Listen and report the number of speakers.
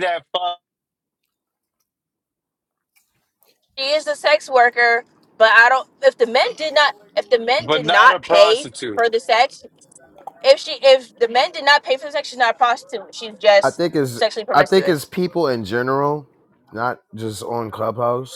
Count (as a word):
three